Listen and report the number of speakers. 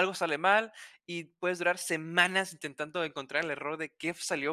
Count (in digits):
1